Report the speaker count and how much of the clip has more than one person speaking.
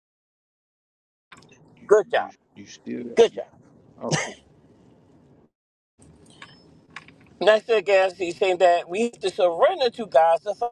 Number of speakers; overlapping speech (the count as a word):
two, about 4%